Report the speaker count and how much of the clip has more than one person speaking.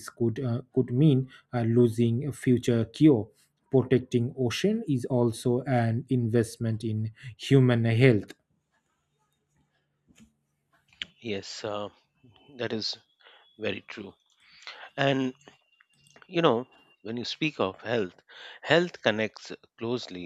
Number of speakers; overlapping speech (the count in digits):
2, no overlap